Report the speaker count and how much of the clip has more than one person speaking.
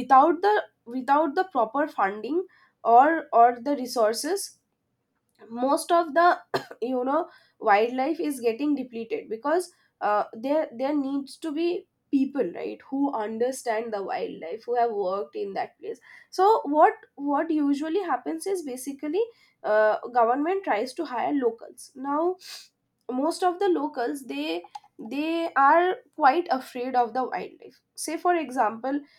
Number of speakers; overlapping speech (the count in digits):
1, no overlap